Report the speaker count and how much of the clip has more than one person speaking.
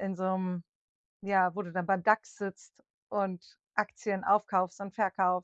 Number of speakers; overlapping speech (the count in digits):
1, no overlap